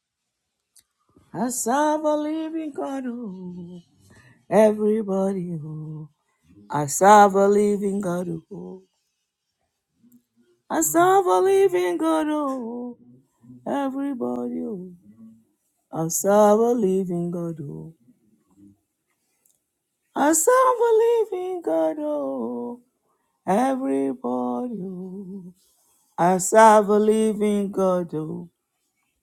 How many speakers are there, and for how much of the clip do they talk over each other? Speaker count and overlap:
1, no overlap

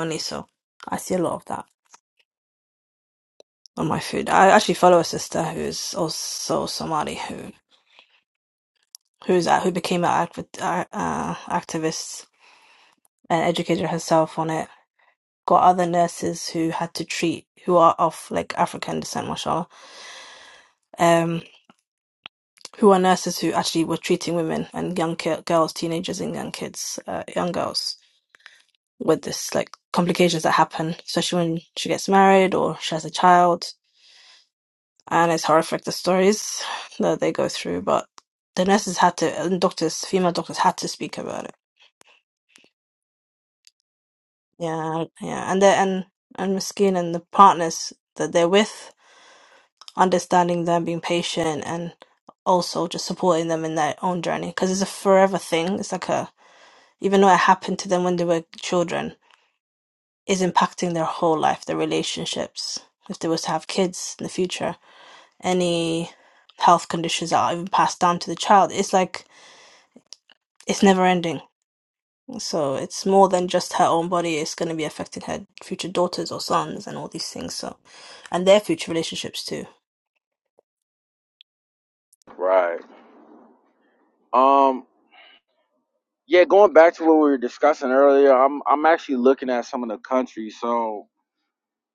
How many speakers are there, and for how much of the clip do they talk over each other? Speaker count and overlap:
2, no overlap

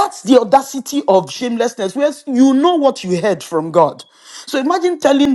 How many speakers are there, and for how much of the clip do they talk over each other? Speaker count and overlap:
1, no overlap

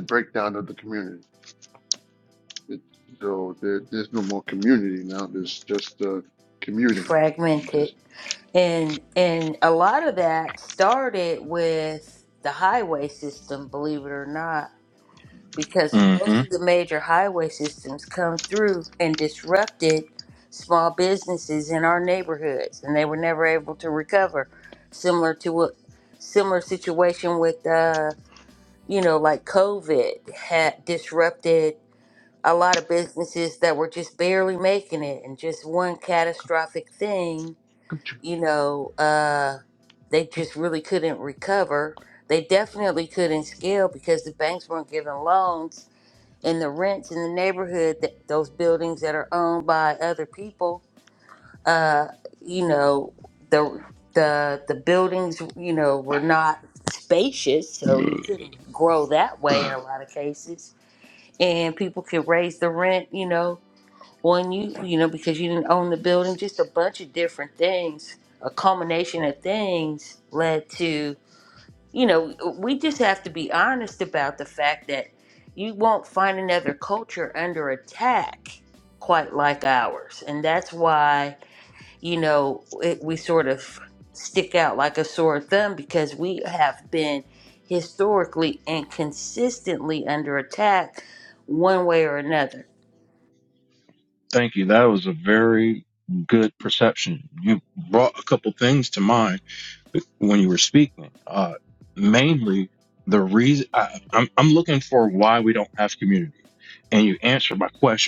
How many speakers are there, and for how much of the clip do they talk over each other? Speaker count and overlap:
3, about 1%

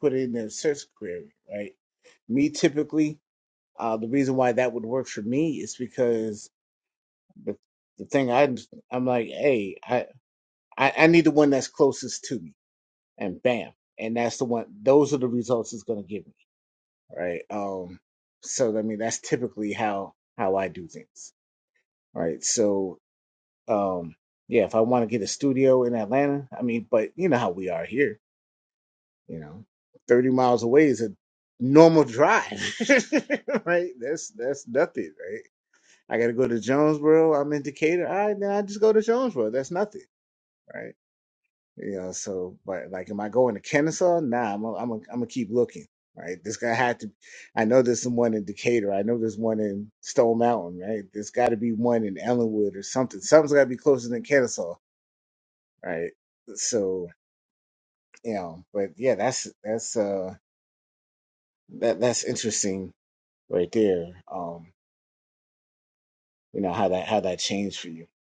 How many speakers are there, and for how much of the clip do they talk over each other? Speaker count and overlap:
1, no overlap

